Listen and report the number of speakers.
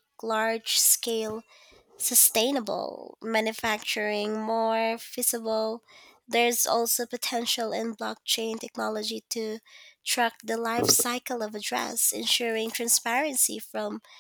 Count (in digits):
1